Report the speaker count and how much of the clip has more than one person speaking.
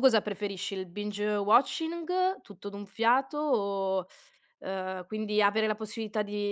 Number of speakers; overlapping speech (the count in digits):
1, no overlap